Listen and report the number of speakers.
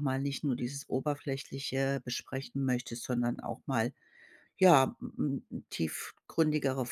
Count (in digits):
1